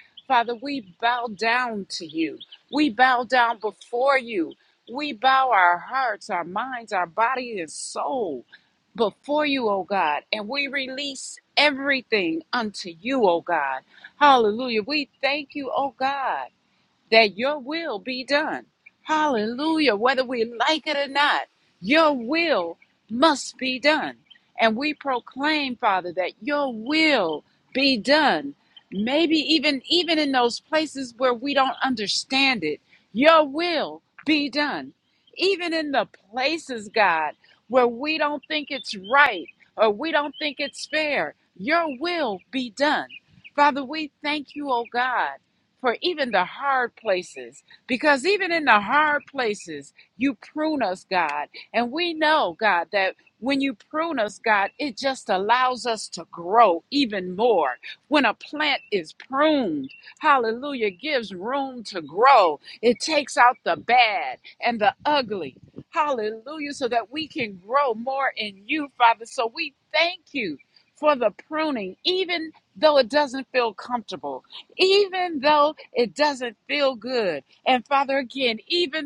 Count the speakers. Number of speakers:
1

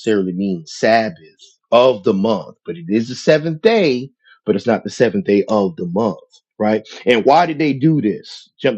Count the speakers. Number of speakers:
1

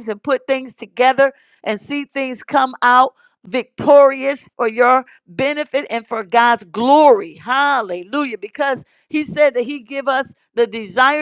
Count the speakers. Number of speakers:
1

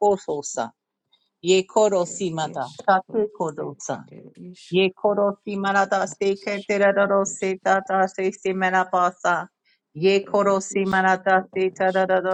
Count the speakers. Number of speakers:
2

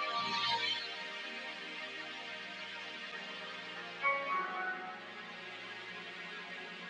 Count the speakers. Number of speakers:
0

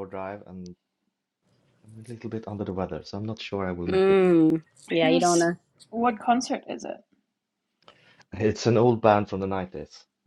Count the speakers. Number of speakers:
3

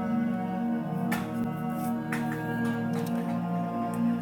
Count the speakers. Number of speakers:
0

